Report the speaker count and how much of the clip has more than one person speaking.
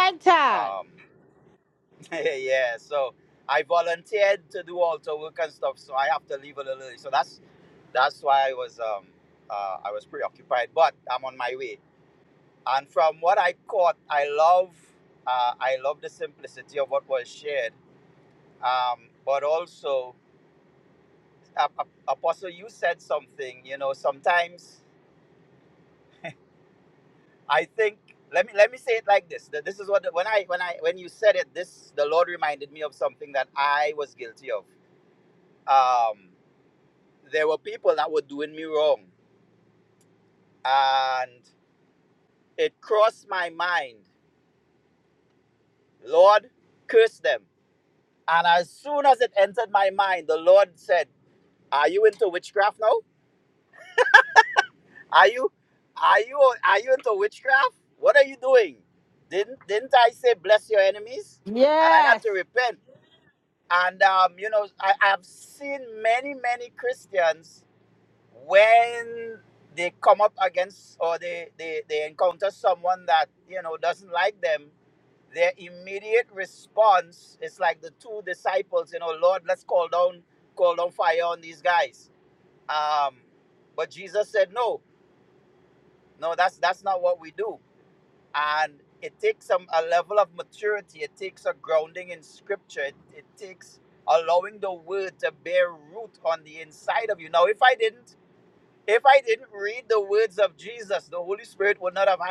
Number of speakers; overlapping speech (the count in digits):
2, about 1%